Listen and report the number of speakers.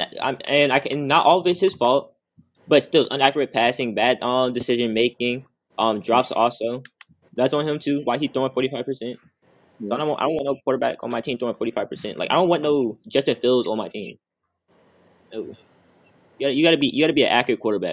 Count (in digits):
1